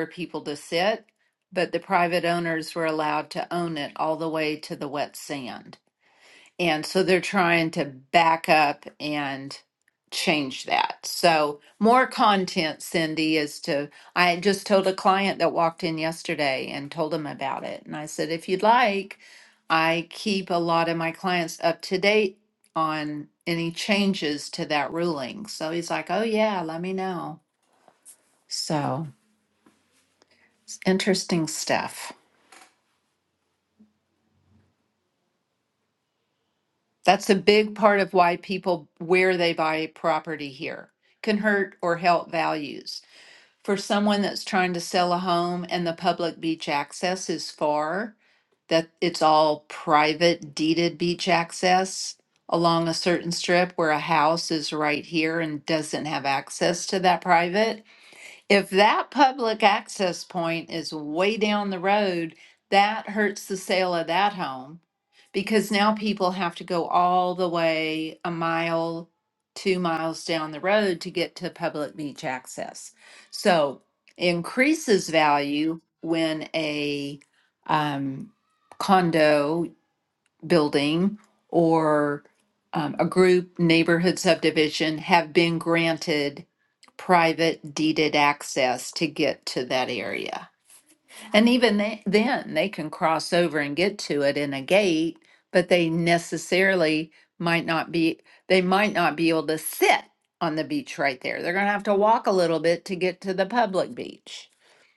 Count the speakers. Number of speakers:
one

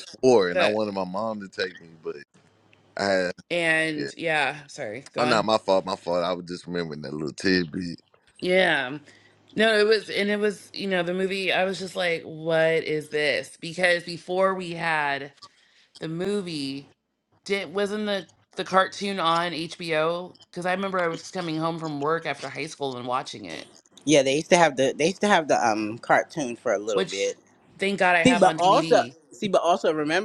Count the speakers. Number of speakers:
three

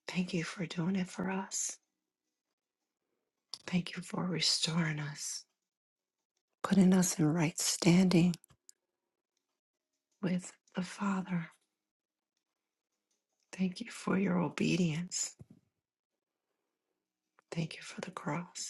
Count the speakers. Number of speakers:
one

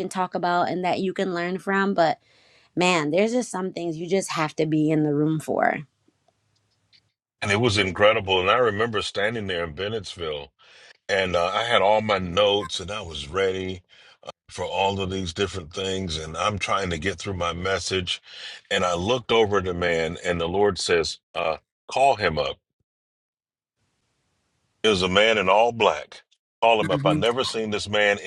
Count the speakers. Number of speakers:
two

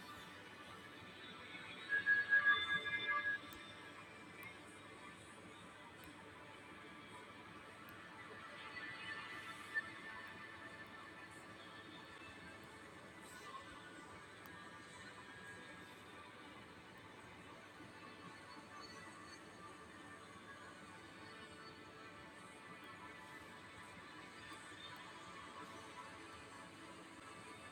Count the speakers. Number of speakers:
zero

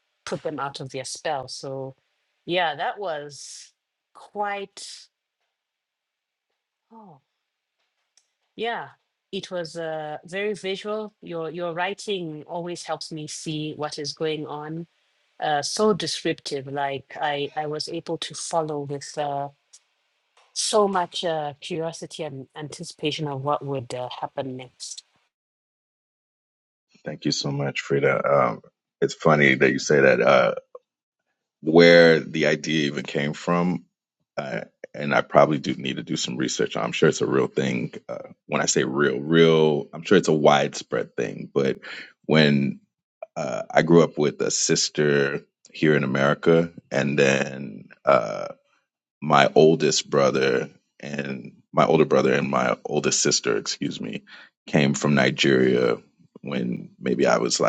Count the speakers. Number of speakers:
two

